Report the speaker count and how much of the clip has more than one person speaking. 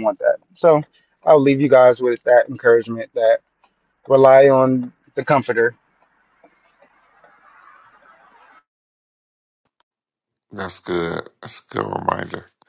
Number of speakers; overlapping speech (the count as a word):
two, no overlap